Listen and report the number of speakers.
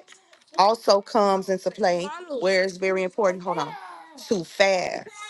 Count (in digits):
1